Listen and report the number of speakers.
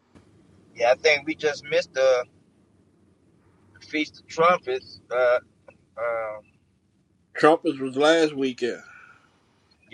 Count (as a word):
two